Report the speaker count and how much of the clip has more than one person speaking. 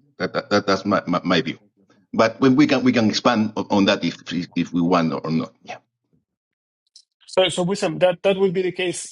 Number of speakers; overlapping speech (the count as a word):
two, no overlap